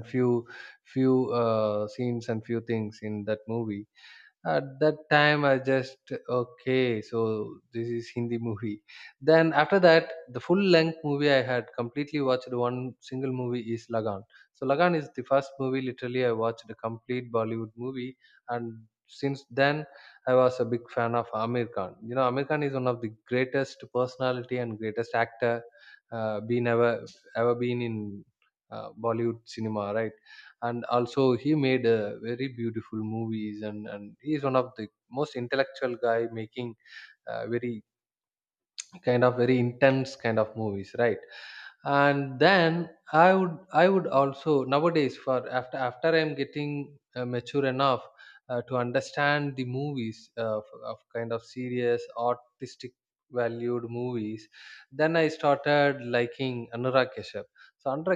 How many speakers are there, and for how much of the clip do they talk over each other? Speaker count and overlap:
one, no overlap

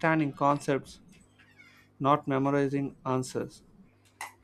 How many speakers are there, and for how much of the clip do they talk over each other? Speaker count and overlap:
one, no overlap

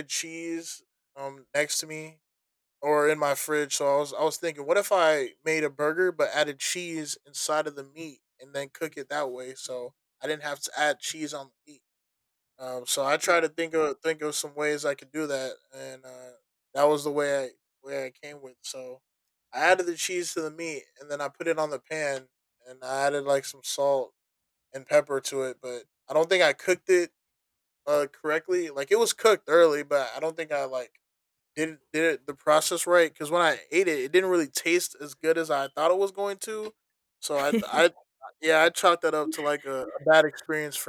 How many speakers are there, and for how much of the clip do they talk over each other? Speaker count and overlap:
one, no overlap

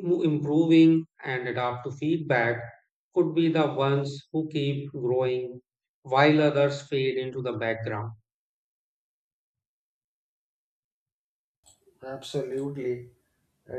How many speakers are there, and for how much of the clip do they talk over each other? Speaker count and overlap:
two, no overlap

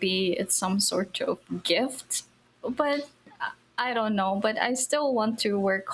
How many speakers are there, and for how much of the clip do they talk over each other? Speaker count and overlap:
one, no overlap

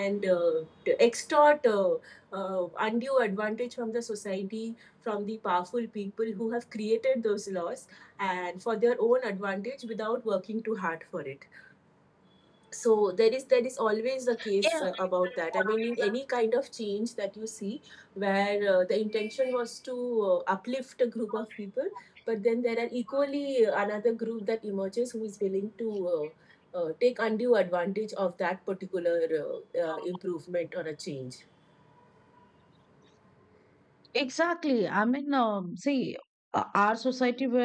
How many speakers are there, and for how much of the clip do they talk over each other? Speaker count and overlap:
two, about 1%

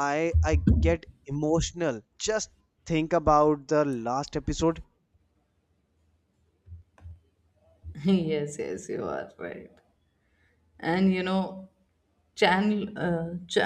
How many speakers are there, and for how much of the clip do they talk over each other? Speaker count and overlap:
two, no overlap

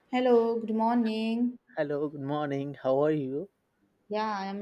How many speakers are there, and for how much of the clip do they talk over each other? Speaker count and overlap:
two, no overlap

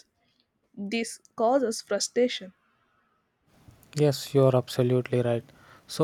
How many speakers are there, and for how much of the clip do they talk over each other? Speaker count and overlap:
two, no overlap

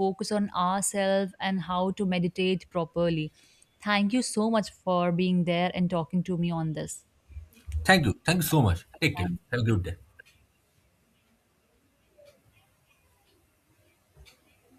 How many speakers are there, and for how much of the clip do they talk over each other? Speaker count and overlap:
two, about 1%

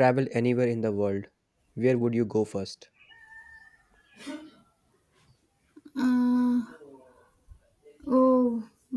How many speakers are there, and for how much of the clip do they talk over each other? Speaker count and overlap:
two, no overlap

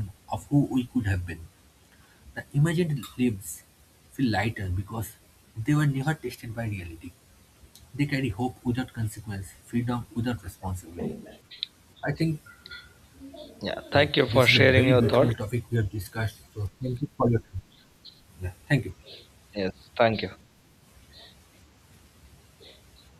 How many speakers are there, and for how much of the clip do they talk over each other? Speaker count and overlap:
two, about 6%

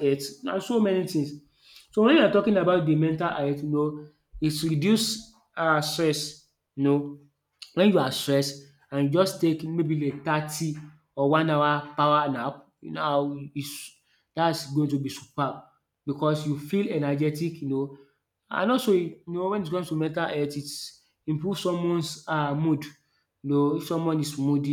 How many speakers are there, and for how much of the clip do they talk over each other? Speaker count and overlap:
one, no overlap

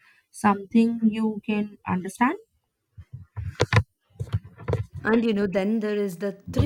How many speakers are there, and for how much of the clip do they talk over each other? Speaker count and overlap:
two, no overlap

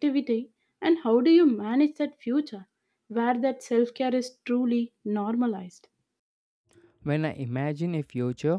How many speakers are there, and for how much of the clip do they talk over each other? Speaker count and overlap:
two, no overlap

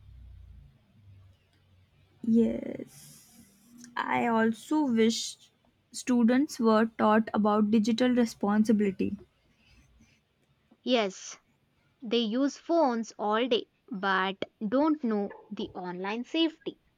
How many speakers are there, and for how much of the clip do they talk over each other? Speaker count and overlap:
two, no overlap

